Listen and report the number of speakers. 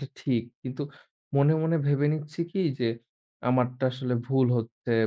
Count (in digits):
1